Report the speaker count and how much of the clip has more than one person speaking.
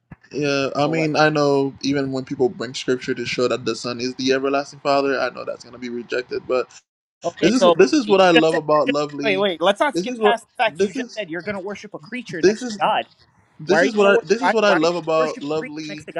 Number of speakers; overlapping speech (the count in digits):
2, about 34%